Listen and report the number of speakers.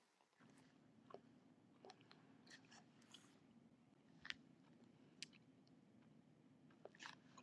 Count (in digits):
0